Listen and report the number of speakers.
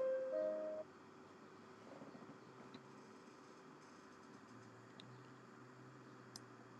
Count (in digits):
0